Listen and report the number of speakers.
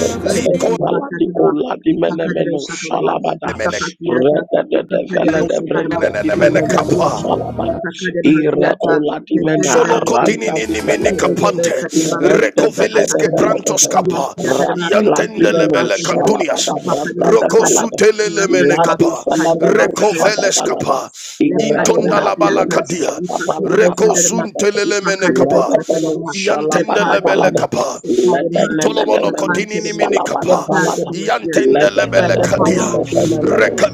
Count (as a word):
three